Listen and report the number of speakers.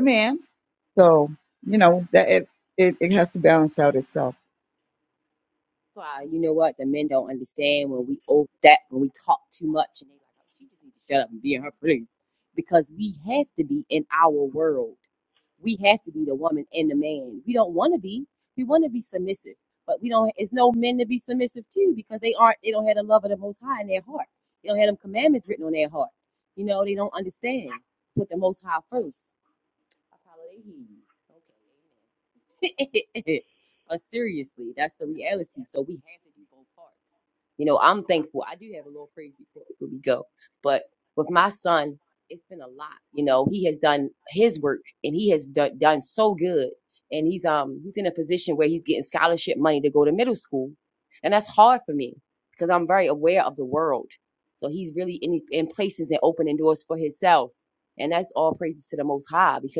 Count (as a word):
two